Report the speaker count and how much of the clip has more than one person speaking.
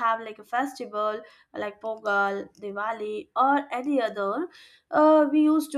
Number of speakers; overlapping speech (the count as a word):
one, no overlap